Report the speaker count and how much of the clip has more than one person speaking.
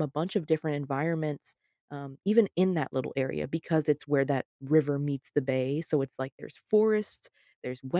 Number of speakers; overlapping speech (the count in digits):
1, no overlap